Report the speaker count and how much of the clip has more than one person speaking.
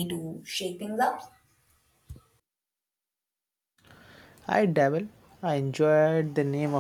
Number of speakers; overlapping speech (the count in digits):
2, no overlap